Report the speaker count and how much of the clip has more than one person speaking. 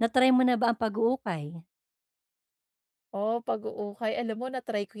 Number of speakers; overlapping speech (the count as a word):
two, no overlap